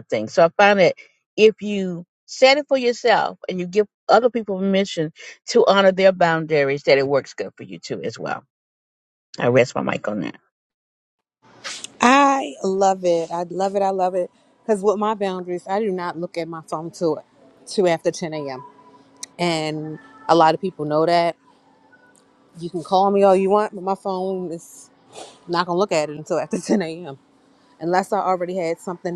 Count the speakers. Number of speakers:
2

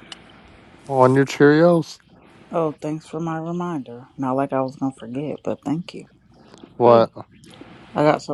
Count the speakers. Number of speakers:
2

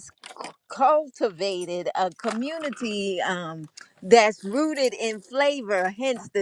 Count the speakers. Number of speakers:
1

